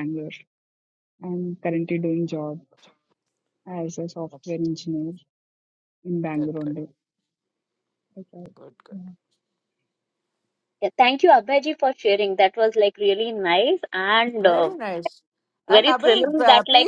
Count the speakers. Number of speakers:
3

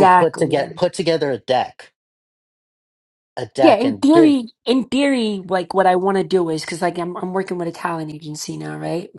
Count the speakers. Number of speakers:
2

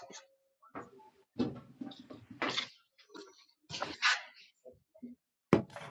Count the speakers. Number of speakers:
0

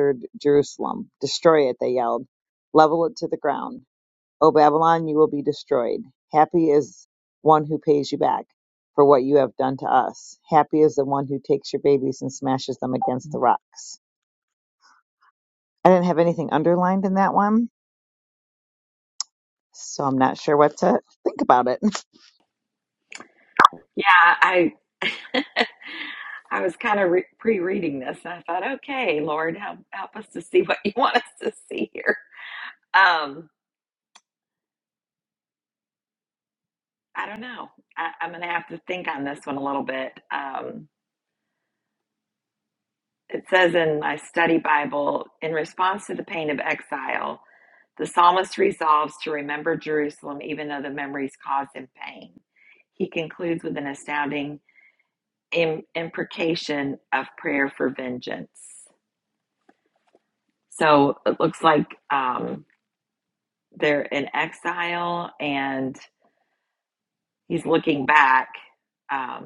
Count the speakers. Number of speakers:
2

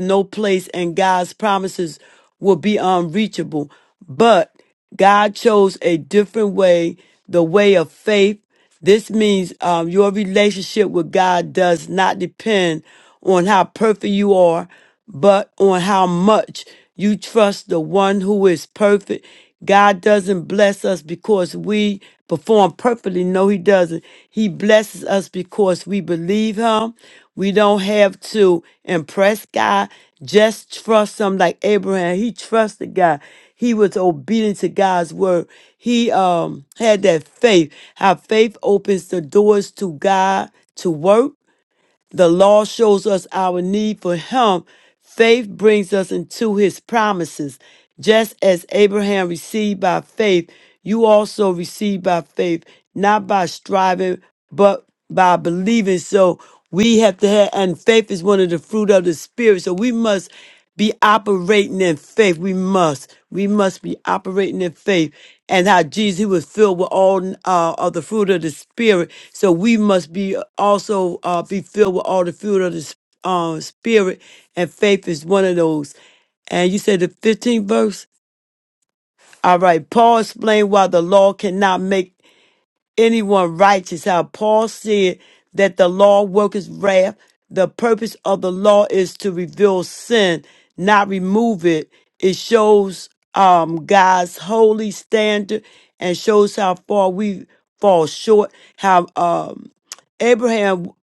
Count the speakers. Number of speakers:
1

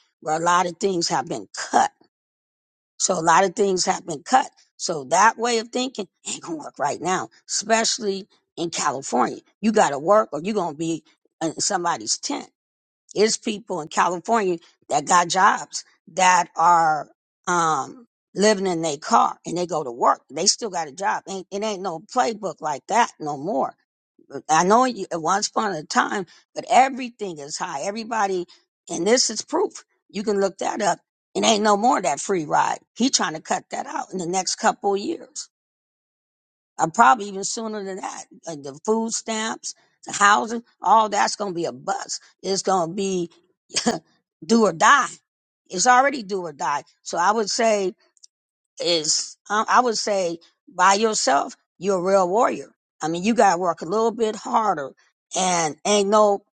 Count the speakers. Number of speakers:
1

